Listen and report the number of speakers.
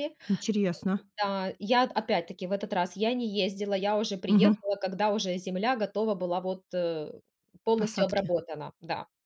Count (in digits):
2